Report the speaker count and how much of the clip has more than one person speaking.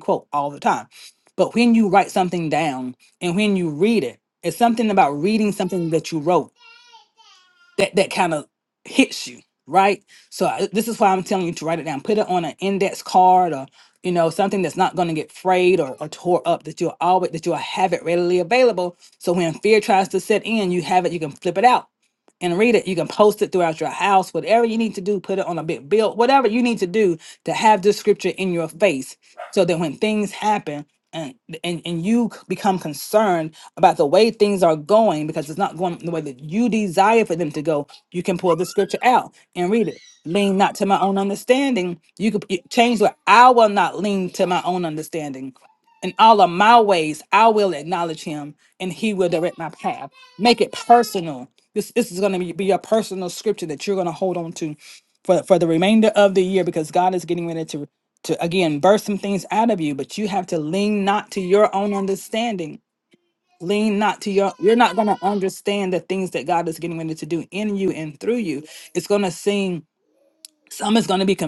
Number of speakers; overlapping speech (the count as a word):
one, no overlap